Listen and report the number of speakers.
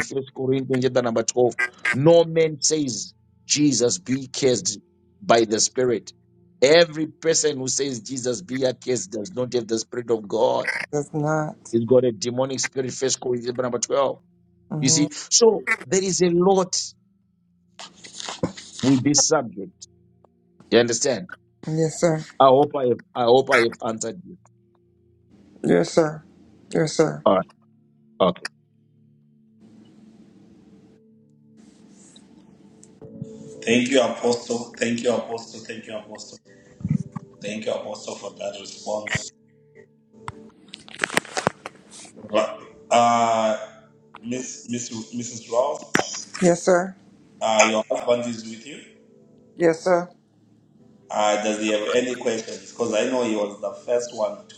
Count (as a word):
three